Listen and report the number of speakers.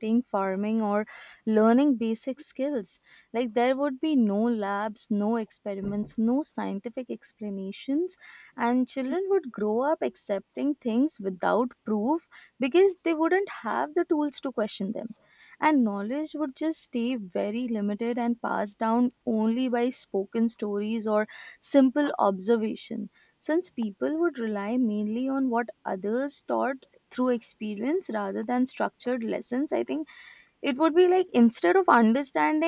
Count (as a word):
one